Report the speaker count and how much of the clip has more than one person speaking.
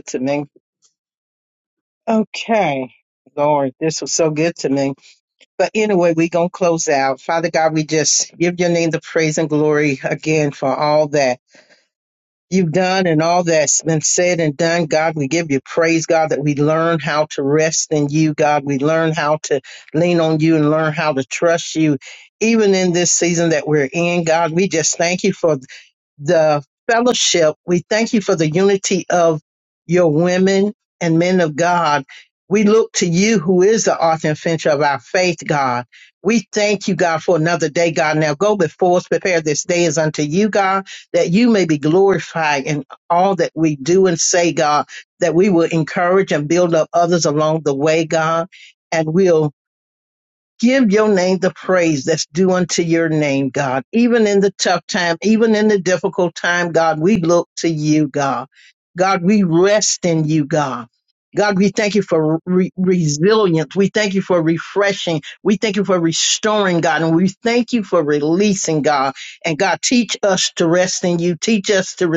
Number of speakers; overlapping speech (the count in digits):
1, no overlap